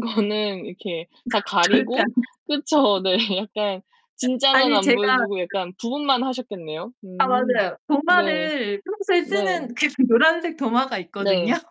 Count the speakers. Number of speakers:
2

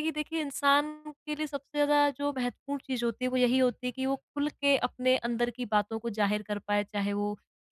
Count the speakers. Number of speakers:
1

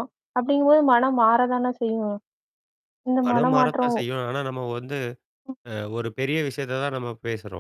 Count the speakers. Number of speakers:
2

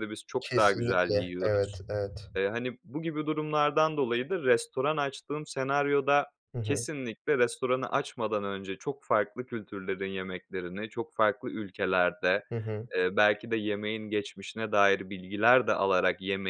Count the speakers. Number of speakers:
2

